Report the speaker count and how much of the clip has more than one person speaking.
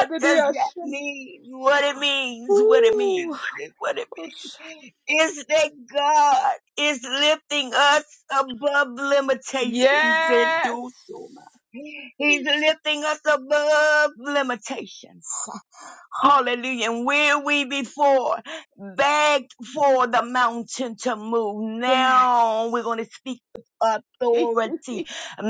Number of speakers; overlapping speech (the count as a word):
two, about 14%